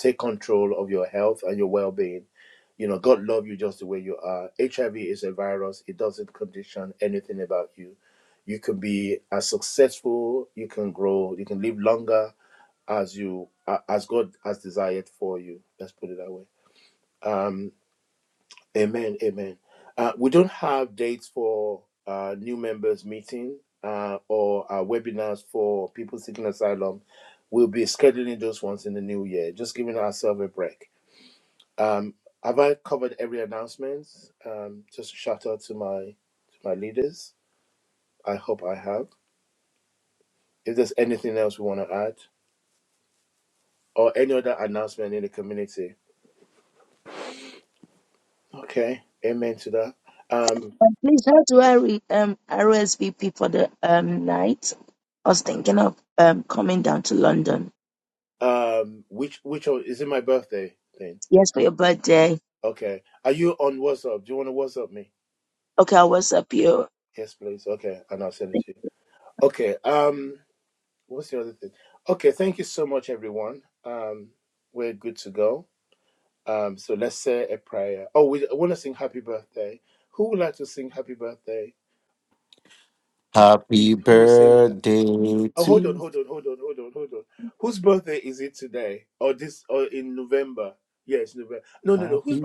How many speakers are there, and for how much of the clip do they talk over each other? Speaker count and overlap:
3, about 1%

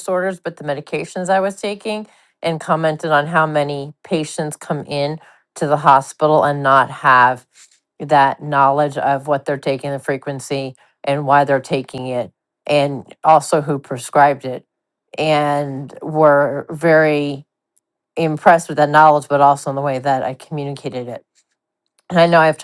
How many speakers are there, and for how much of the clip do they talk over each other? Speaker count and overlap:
1, no overlap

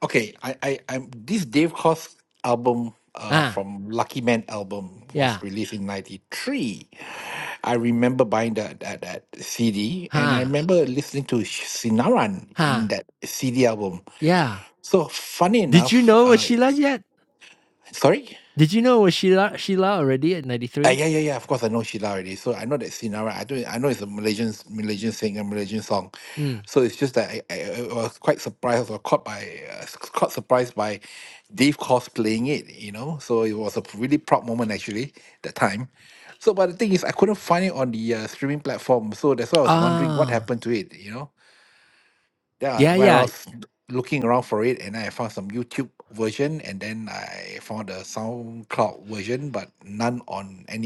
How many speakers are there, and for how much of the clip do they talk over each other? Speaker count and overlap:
2, about 7%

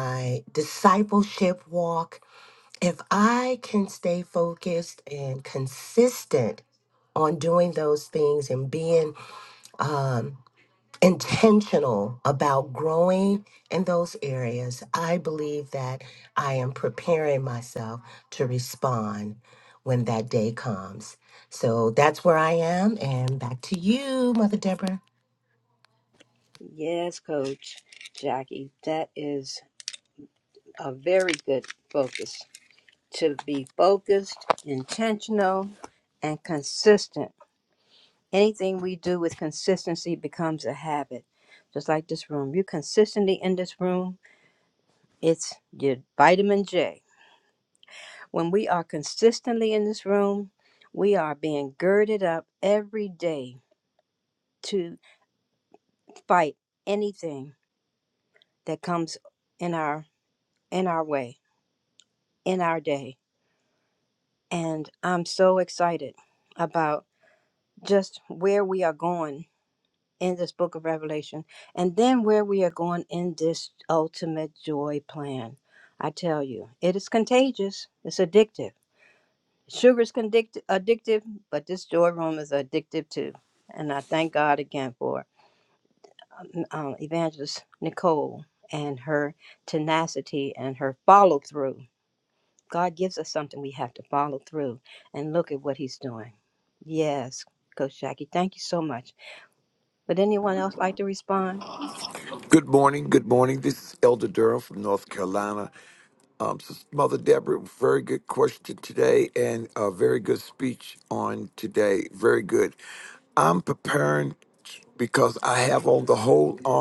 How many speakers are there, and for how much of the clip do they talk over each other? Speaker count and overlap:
3, no overlap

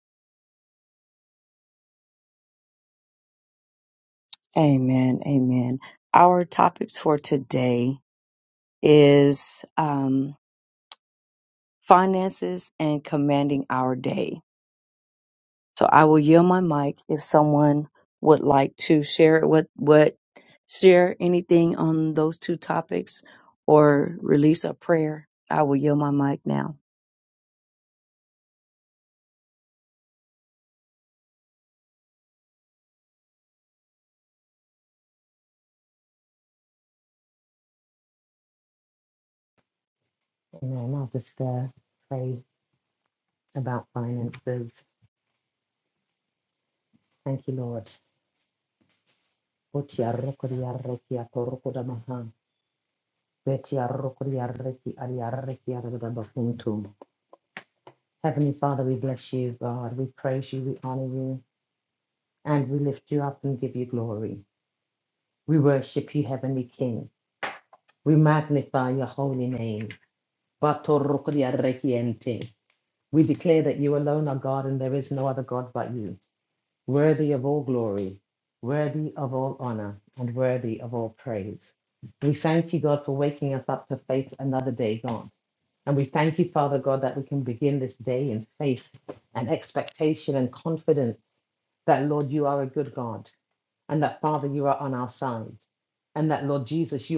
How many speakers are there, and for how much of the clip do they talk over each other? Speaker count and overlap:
2, no overlap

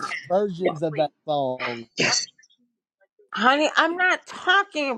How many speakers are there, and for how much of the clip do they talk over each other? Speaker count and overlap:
2, no overlap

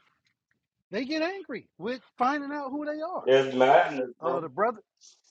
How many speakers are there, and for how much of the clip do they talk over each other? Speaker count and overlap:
2, about 4%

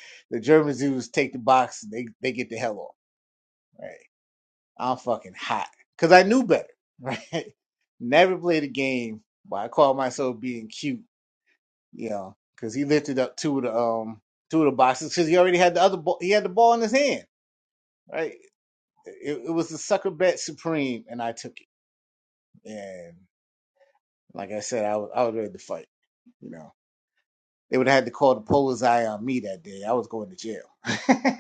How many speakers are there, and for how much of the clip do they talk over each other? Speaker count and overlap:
1, no overlap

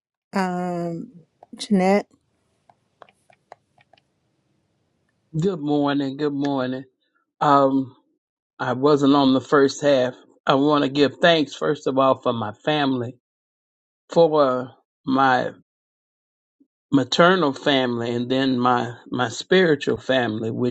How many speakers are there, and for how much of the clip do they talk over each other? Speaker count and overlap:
2, no overlap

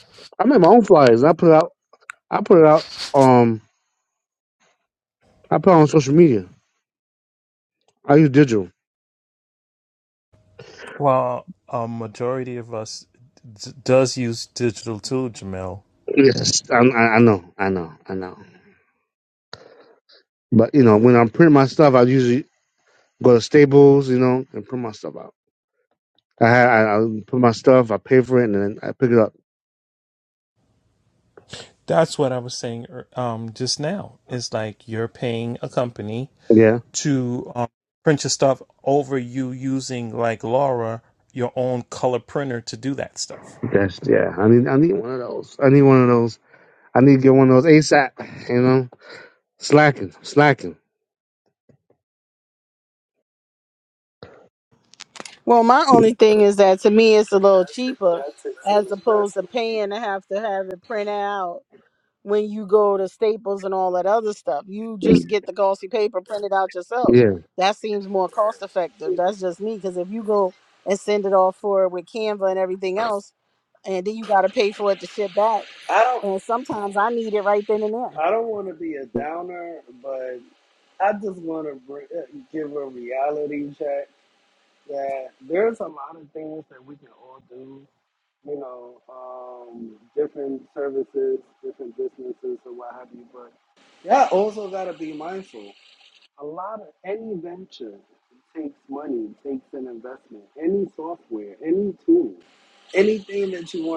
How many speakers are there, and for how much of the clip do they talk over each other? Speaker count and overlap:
4, about 1%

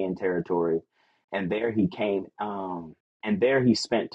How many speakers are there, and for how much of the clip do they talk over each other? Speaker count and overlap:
1, no overlap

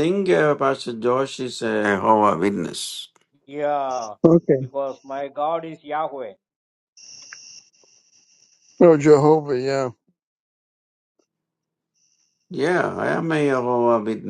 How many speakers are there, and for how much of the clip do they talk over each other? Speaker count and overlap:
3, under 1%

